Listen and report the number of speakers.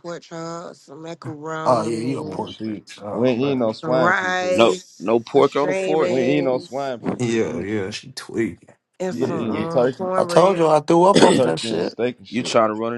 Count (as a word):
four